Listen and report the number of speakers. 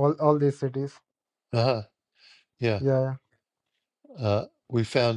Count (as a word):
two